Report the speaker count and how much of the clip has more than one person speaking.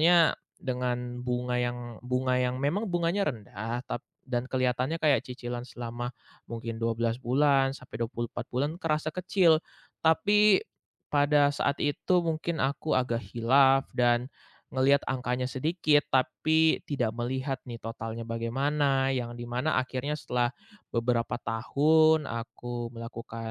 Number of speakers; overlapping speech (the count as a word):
one, no overlap